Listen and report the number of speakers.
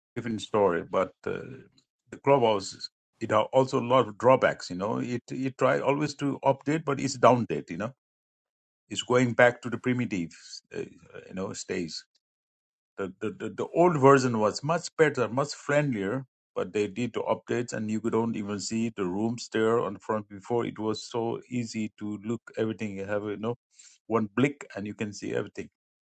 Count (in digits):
1